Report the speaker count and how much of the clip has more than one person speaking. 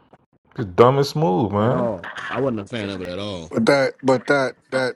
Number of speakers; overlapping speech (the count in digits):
3, about 6%